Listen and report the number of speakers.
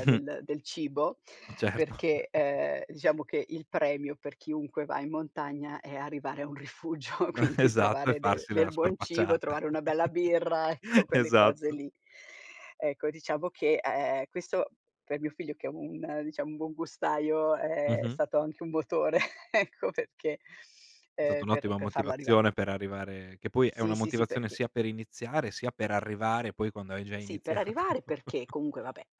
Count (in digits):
2